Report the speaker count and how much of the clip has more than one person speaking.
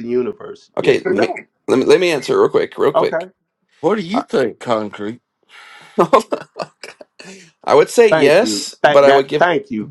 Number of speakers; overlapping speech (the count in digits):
3, about 24%